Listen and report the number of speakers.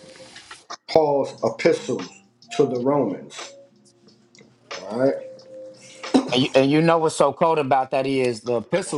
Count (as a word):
two